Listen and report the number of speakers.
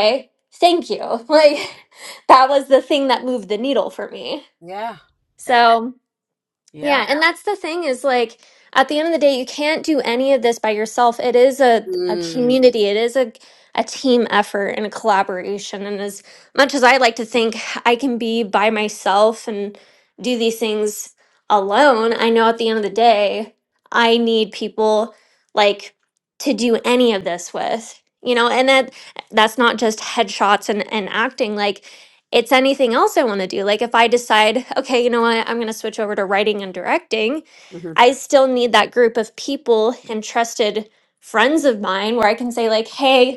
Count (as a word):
two